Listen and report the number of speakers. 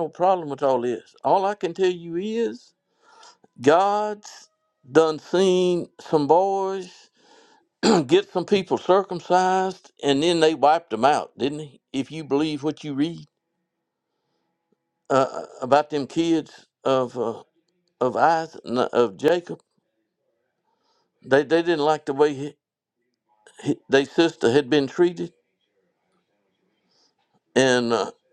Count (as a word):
one